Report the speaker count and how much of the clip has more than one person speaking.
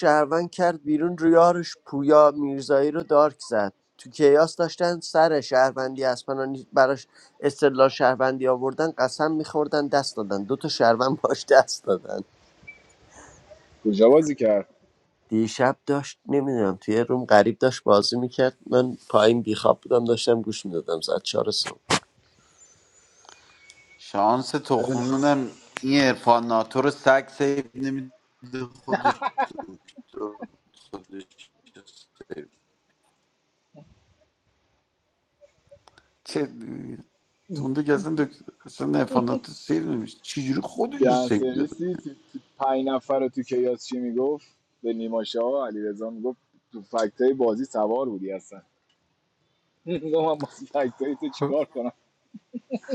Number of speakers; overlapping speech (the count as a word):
three, about 2%